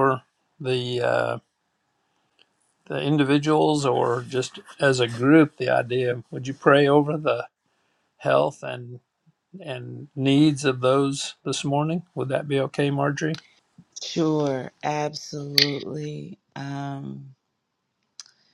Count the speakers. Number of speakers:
2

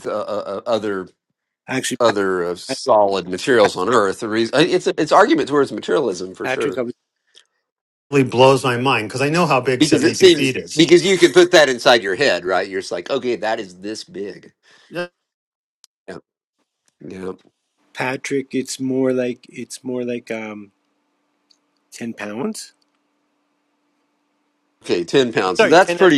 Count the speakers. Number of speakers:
3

